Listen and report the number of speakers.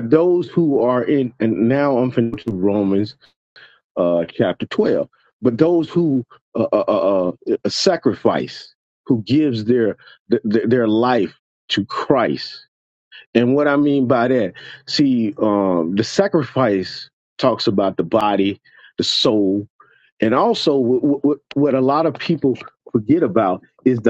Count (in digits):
1